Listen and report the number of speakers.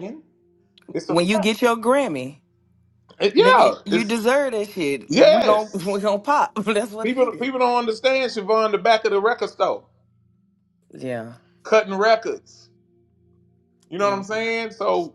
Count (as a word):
two